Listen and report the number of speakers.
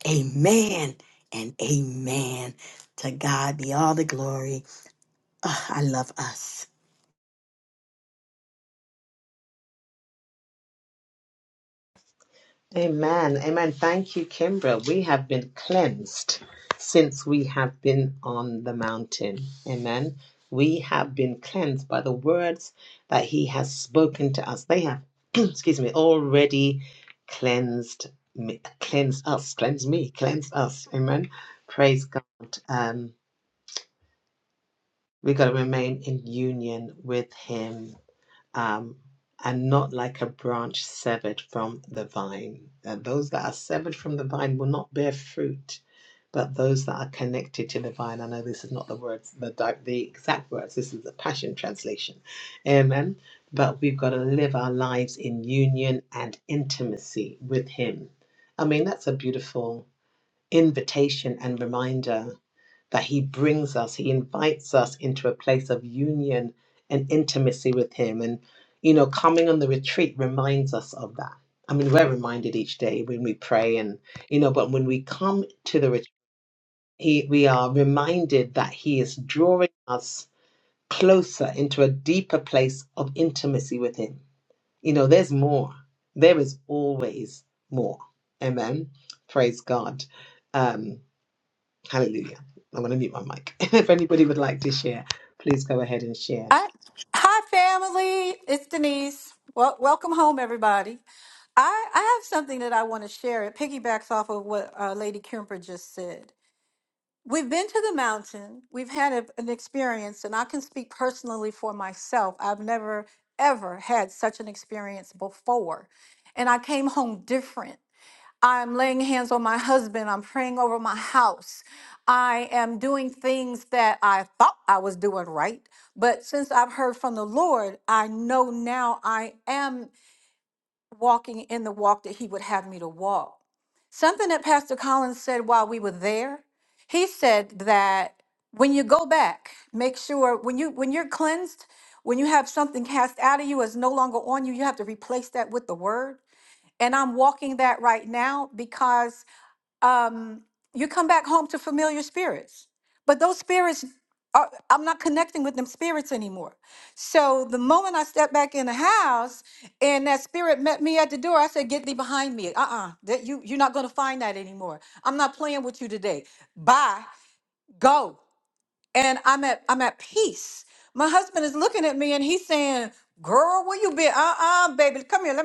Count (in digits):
3